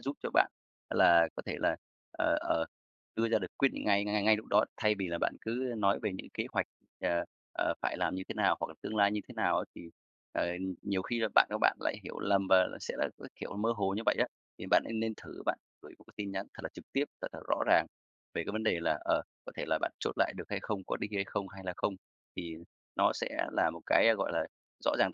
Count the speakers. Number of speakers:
1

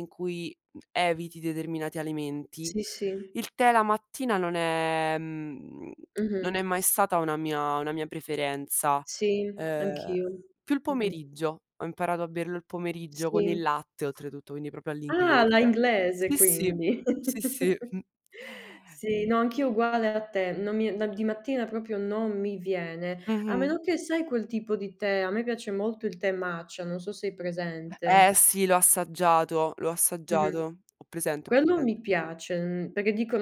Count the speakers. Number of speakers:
2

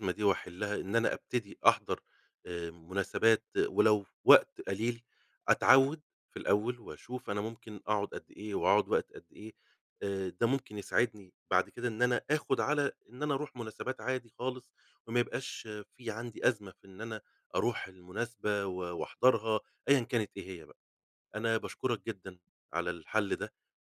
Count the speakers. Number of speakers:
1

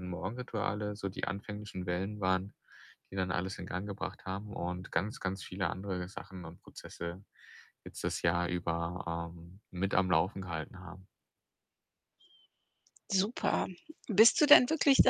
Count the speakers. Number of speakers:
2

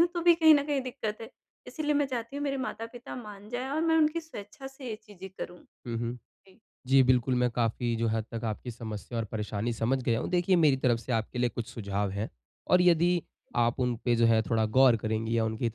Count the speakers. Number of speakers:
2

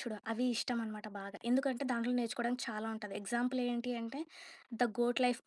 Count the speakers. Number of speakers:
1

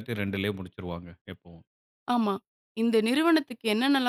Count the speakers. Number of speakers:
2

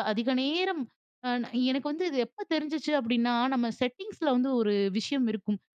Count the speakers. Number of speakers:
1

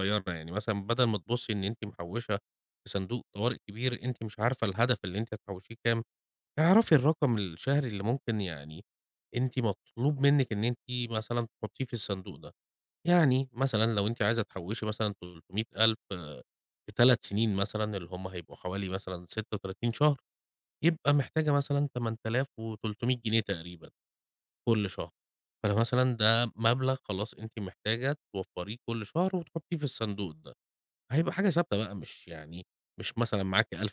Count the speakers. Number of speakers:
1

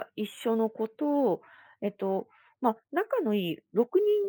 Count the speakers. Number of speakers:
1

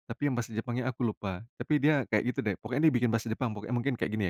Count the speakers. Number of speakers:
1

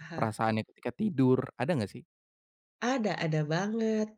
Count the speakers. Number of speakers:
2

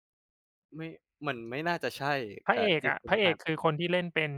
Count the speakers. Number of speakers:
2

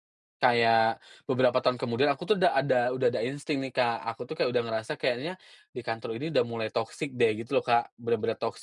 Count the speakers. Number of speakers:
1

